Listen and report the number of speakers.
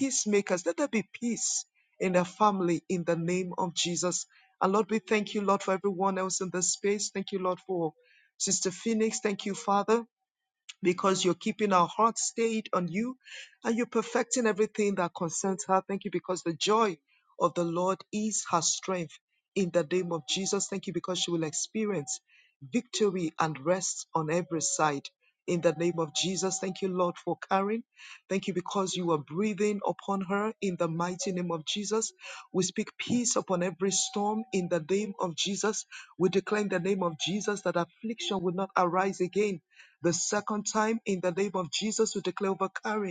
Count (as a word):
one